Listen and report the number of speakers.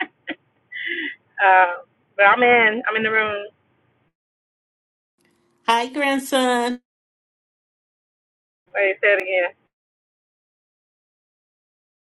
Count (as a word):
two